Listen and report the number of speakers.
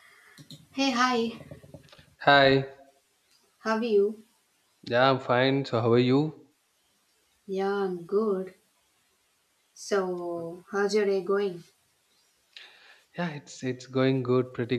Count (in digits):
2